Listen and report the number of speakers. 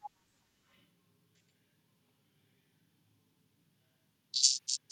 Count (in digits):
0